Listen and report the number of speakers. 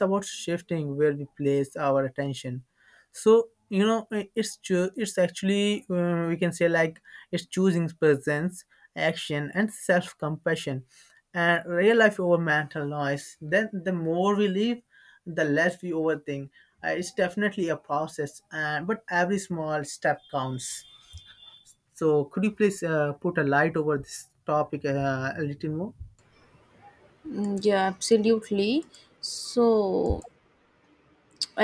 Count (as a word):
two